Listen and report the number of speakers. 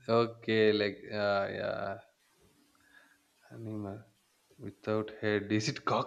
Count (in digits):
1